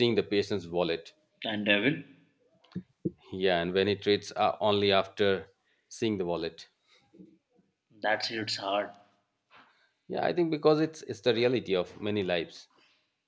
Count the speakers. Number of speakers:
2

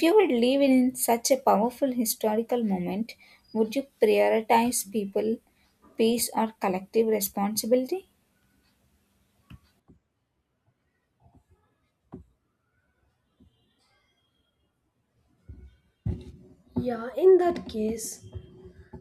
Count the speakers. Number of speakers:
2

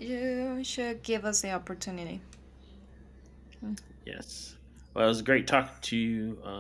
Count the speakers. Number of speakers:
2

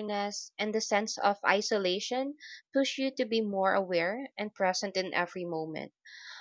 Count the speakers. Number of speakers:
1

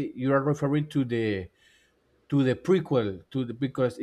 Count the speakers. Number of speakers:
1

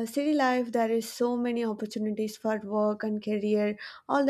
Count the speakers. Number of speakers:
1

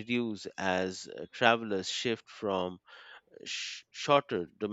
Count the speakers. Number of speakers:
1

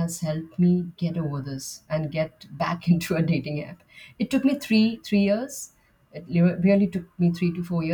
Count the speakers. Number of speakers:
1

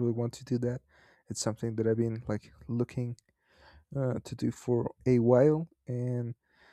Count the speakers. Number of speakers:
1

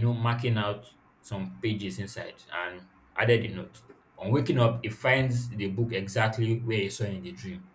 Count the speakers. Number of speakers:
1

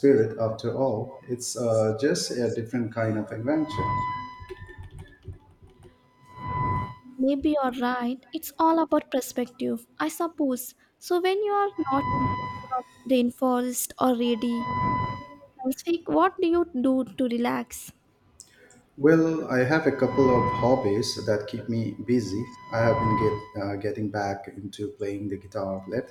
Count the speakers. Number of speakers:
2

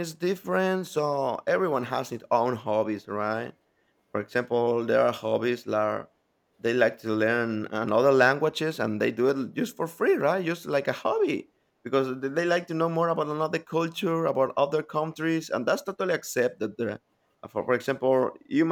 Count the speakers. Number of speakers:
1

